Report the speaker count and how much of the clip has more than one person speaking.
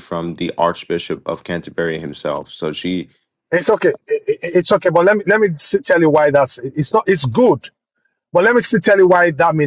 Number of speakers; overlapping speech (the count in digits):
2, no overlap